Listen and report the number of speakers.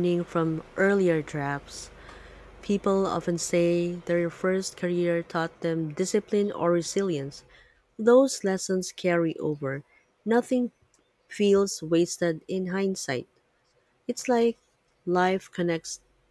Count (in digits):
1